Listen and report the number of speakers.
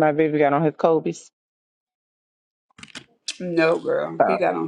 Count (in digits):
2